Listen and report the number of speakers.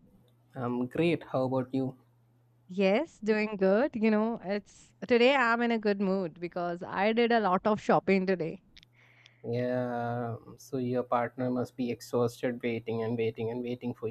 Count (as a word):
two